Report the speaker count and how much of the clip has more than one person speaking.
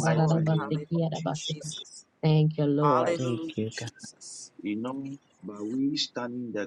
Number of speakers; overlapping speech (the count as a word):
three, about 26%